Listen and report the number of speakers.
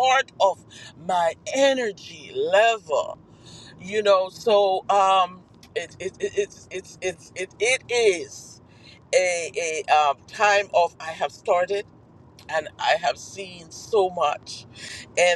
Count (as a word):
one